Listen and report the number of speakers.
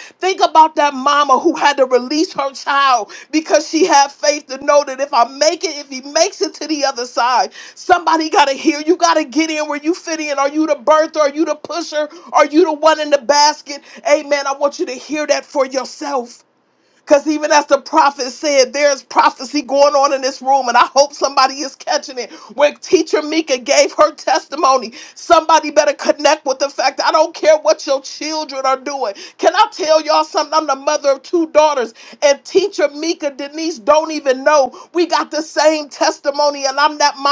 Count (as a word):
one